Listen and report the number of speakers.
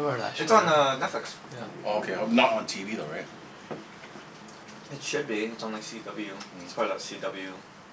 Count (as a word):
three